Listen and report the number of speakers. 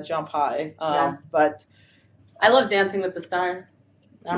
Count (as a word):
two